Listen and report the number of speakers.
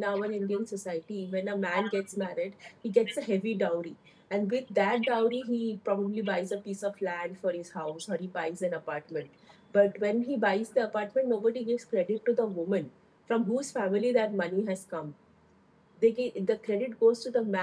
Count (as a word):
one